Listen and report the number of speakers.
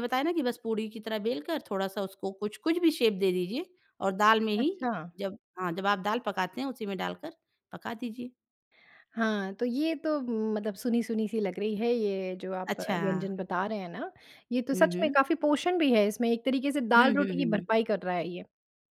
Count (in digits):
2